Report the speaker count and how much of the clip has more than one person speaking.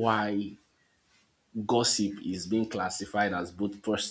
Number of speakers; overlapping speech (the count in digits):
1, no overlap